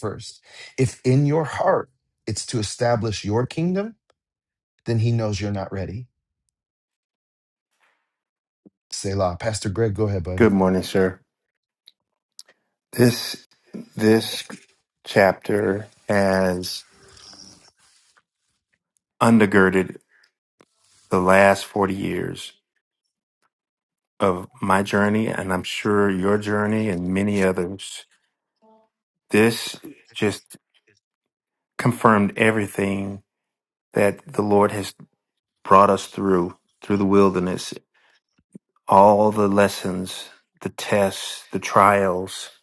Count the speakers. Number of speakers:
2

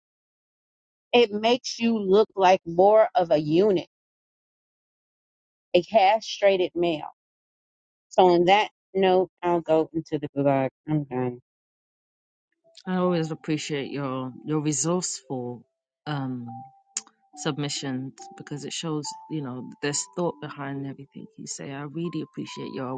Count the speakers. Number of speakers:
2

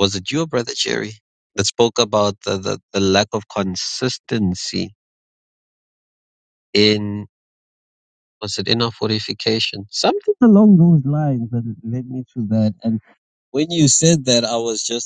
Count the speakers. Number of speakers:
1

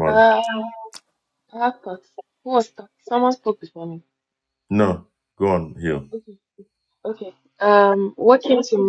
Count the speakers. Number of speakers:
2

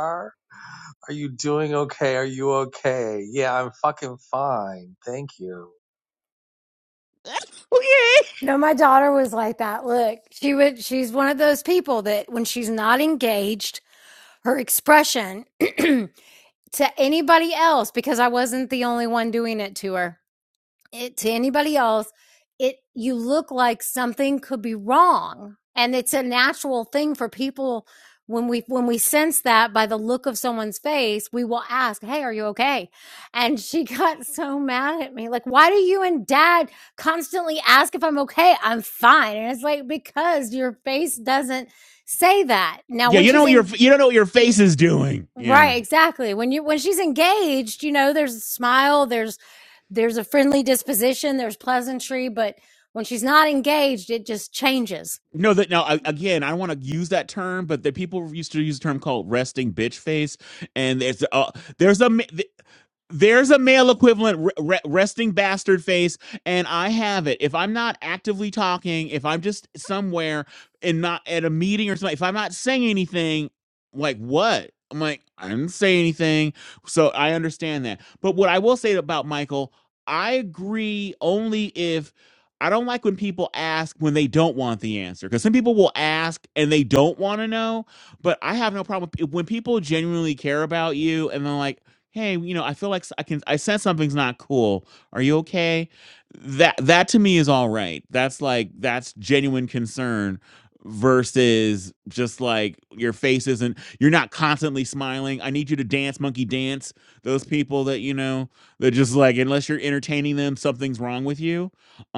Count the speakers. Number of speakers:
3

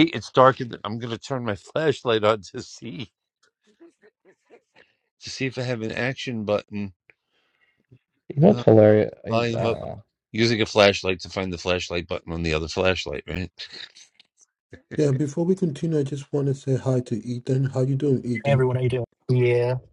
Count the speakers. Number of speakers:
4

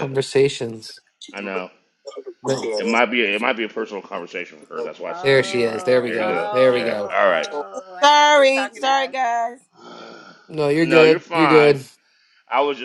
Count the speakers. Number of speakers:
4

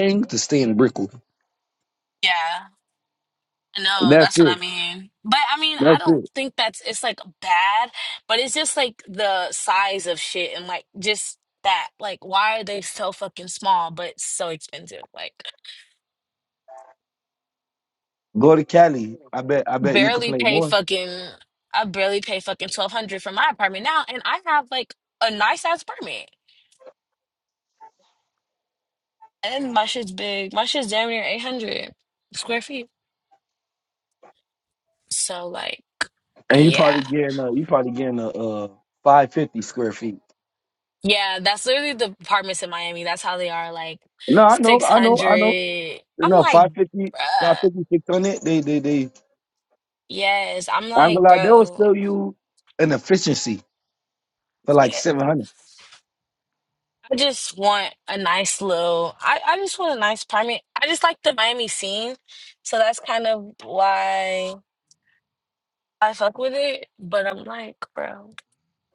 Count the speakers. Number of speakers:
2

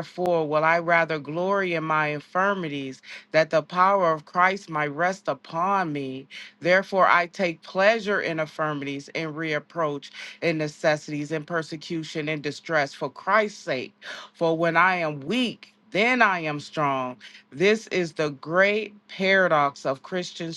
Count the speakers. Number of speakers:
1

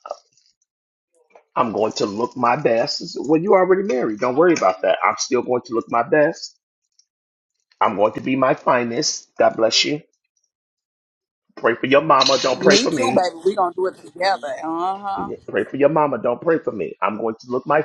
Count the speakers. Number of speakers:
2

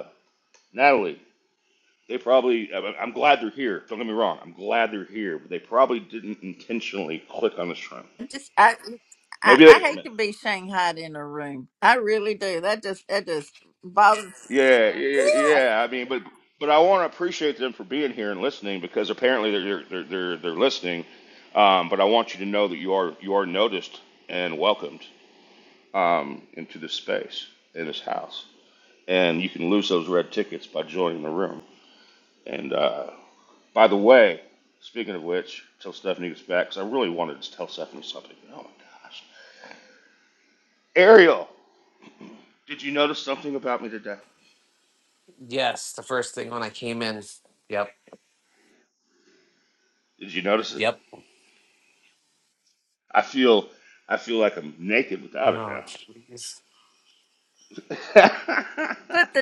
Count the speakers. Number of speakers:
3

